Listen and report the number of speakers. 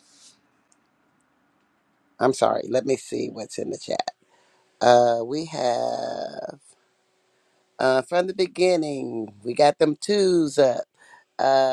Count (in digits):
1